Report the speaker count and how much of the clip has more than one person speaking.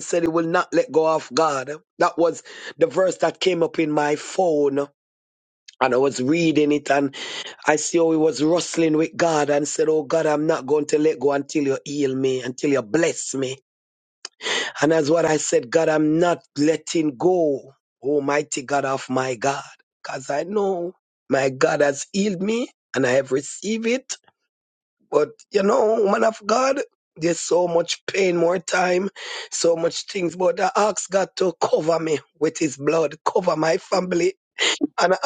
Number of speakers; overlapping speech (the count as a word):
one, no overlap